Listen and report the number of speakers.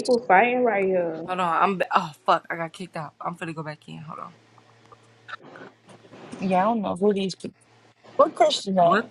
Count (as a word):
three